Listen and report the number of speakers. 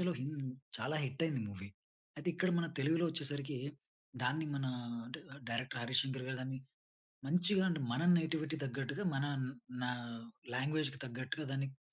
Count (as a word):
one